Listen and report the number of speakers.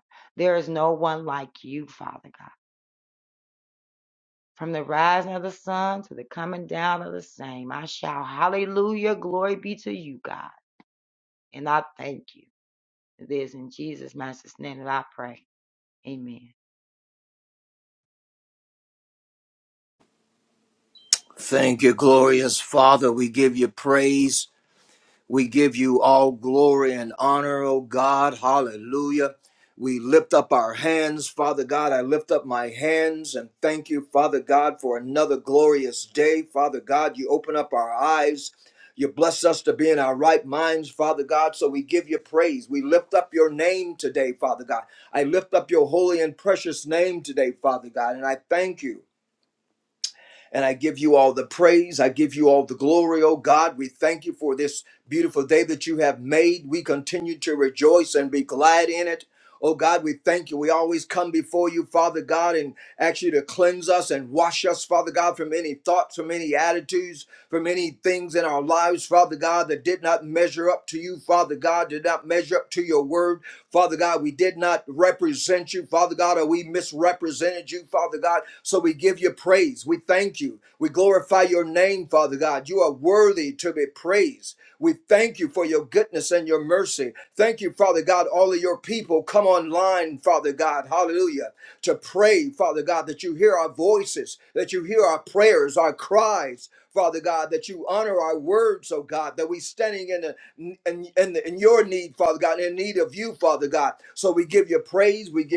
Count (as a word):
two